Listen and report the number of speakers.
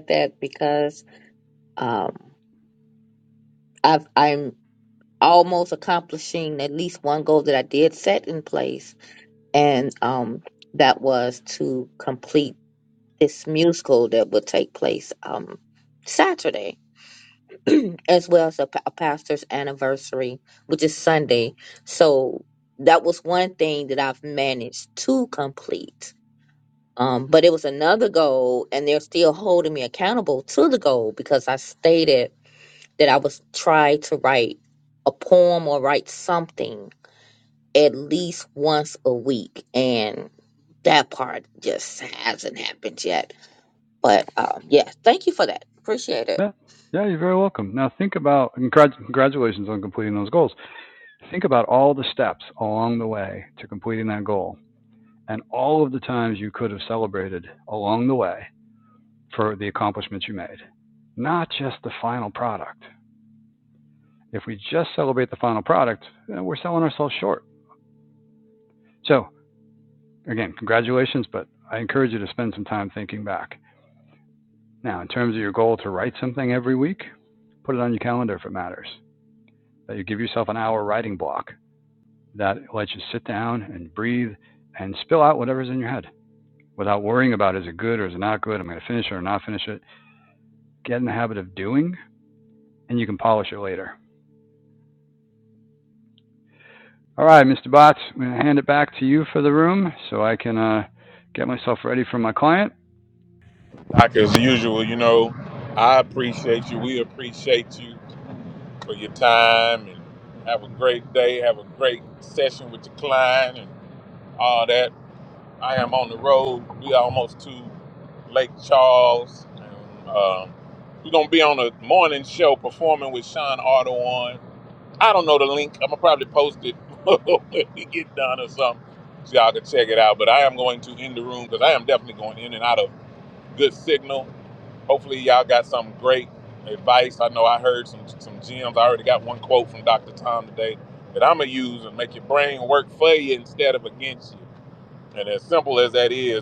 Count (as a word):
three